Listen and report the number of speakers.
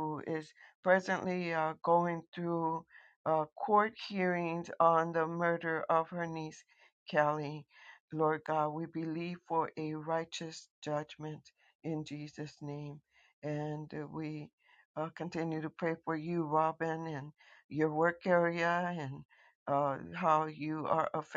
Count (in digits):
1